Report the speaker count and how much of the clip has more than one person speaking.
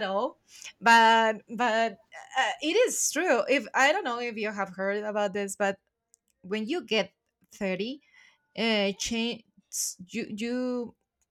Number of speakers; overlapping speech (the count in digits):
1, no overlap